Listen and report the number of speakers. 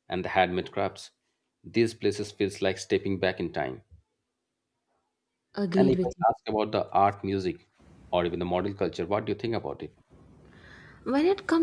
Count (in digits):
2